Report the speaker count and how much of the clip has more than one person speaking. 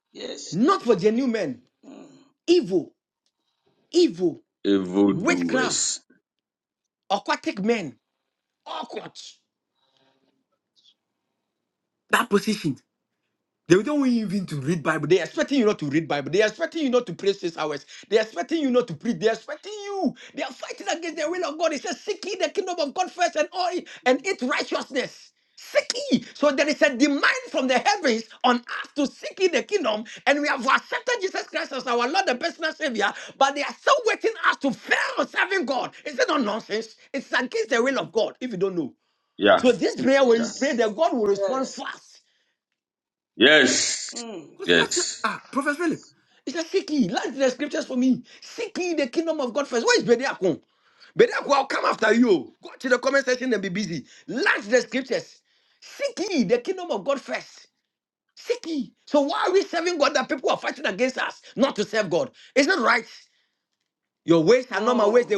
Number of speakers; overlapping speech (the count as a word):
three, about 4%